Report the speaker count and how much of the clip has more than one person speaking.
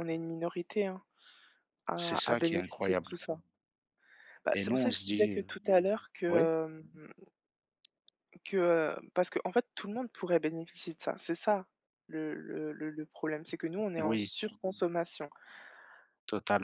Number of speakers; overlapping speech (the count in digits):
2, about 14%